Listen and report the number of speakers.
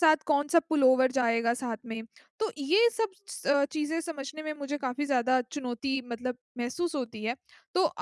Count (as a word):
one